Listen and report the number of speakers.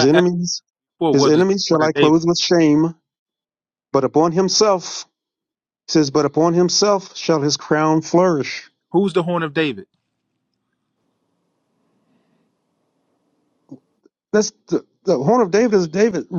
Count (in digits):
2